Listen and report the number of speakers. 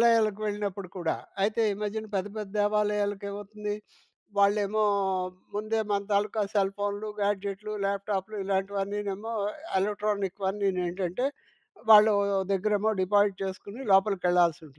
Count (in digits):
1